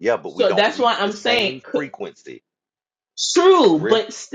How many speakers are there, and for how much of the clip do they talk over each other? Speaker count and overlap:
two, about 43%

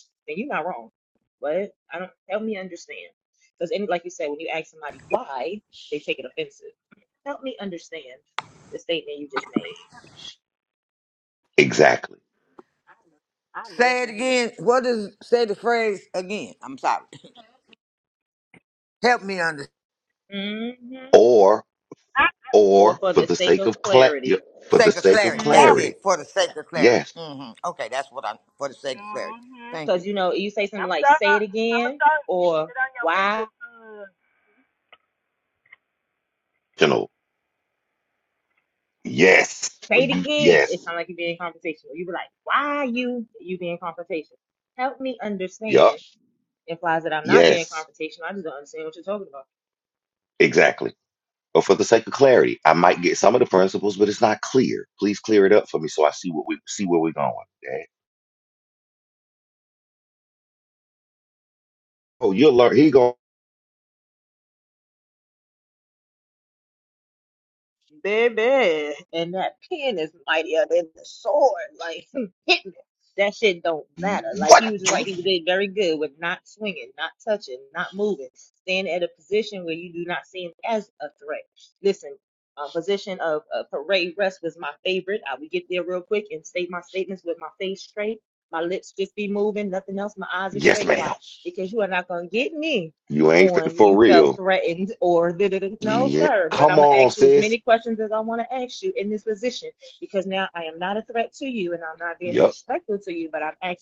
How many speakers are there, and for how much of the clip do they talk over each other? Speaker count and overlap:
four, about 11%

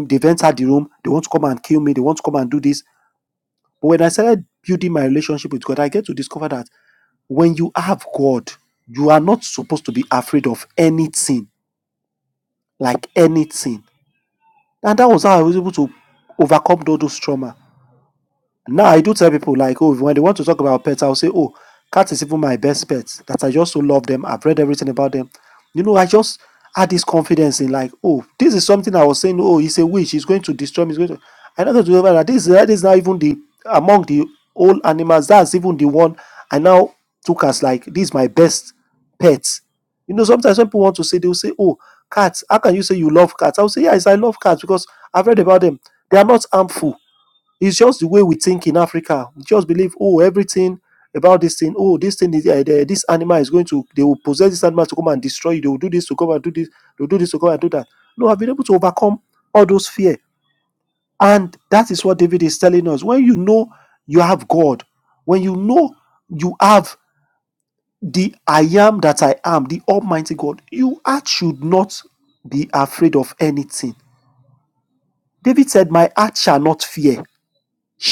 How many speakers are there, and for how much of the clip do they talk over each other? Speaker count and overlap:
one, no overlap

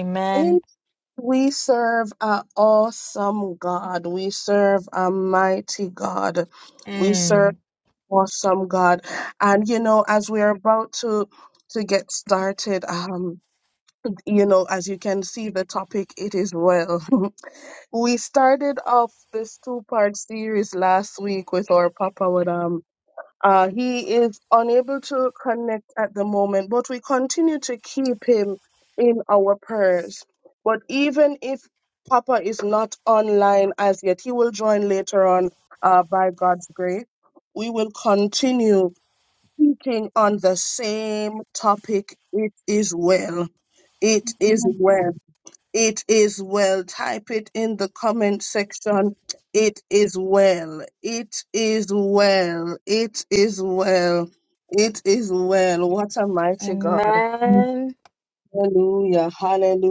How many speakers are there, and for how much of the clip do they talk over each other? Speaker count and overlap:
two, about 2%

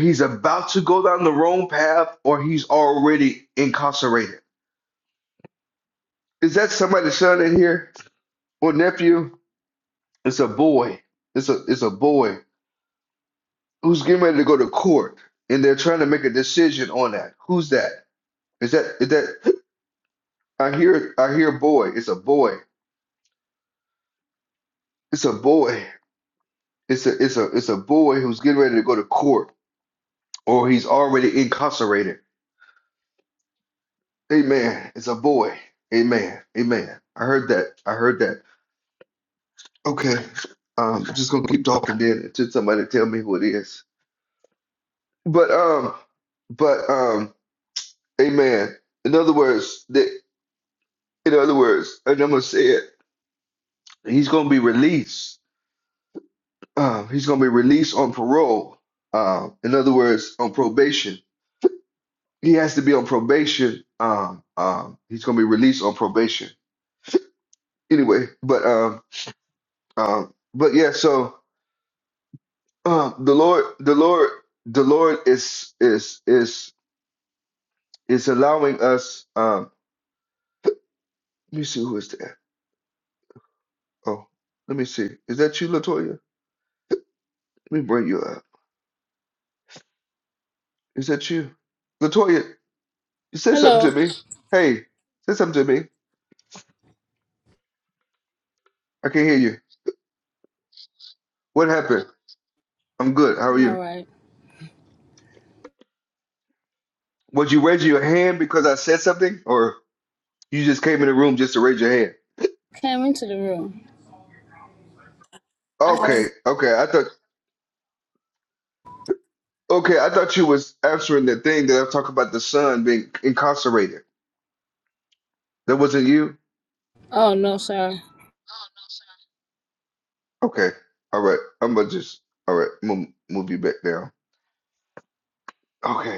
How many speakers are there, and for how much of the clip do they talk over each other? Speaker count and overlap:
two, about 1%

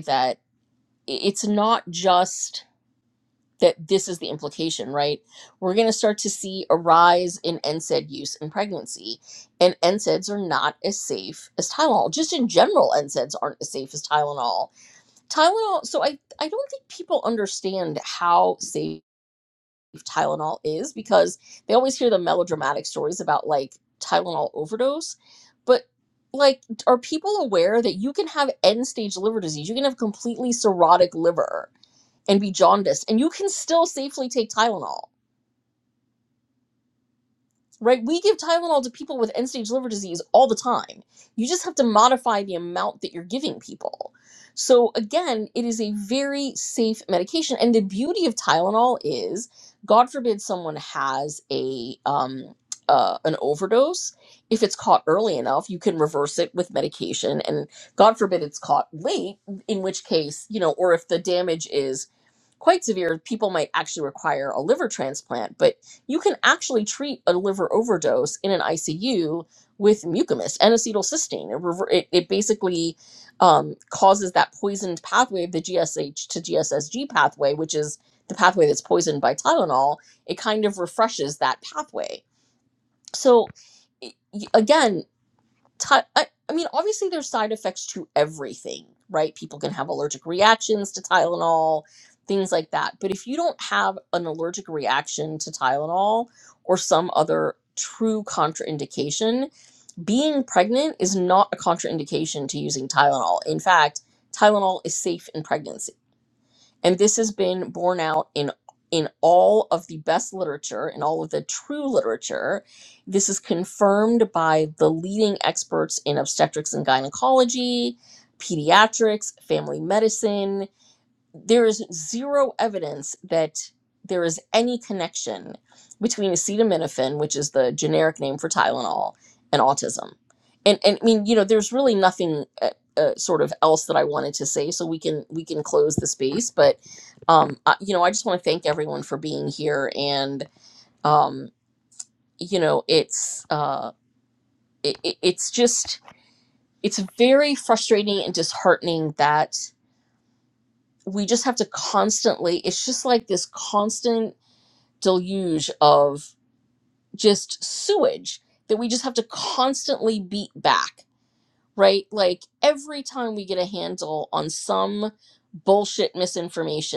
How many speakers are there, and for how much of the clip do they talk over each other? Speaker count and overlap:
one, no overlap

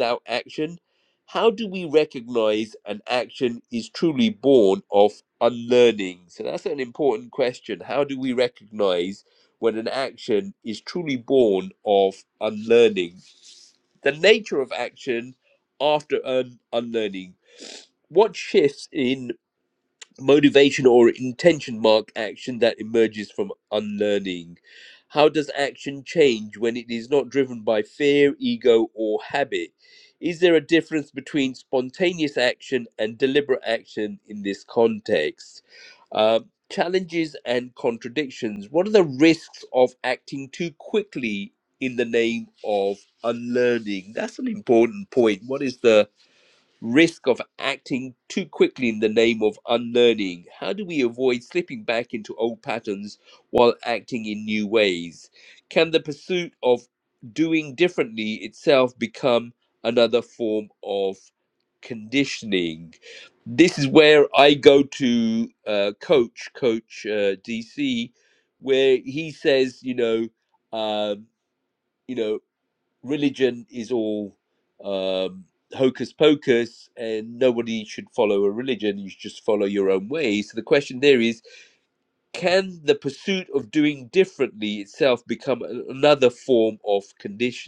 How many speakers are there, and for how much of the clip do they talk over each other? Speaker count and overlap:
one, no overlap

